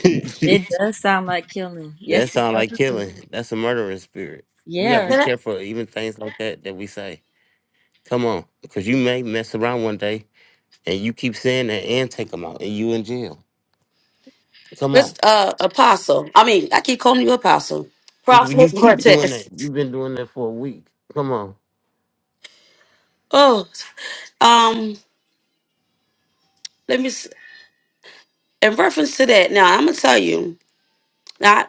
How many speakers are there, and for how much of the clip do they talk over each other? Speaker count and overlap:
3, about 8%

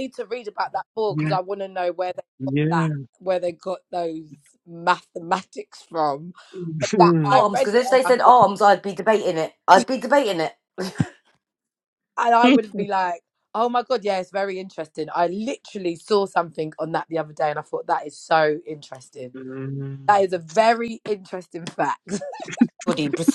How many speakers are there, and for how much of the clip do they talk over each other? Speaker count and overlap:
3, about 7%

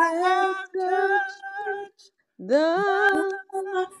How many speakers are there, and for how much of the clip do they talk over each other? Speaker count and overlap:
2, about 37%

